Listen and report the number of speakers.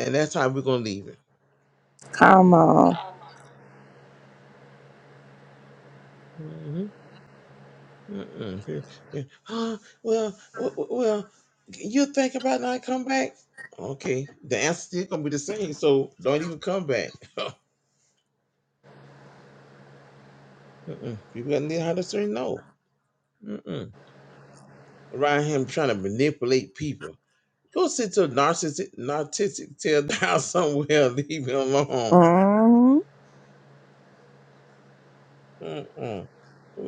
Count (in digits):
2